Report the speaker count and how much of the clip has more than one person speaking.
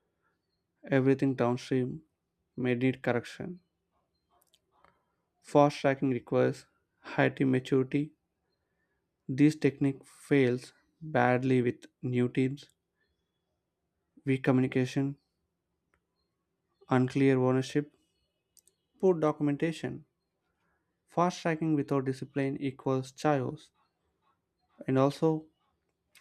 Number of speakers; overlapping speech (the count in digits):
1, no overlap